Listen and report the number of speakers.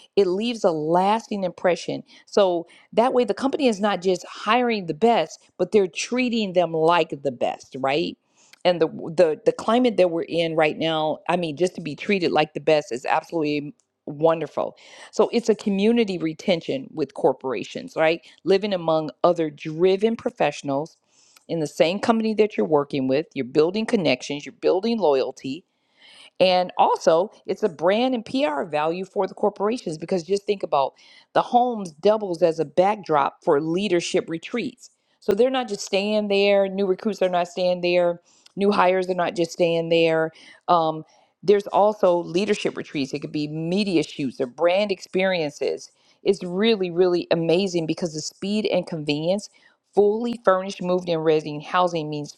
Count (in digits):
1